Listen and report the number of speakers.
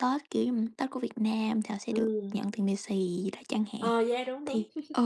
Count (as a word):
two